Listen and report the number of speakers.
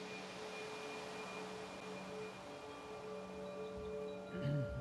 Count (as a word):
zero